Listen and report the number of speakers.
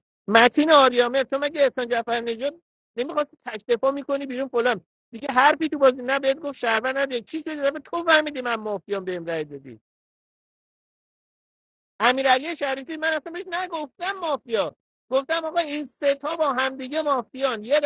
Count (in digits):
1